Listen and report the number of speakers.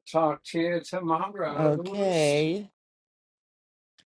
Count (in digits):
2